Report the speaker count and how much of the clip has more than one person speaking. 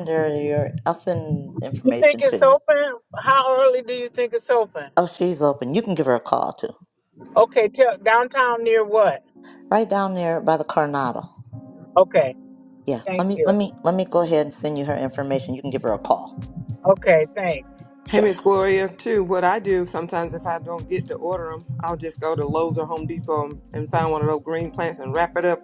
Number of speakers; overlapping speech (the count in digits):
3, about 6%